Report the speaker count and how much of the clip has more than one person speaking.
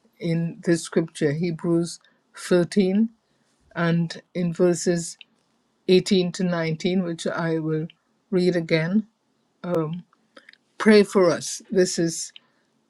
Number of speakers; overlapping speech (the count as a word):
one, no overlap